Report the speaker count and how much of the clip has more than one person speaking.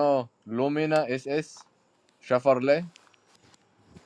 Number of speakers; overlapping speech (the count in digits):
1, no overlap